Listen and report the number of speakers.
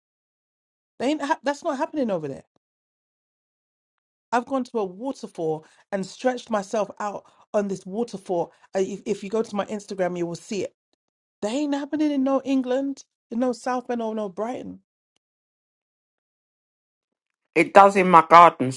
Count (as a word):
two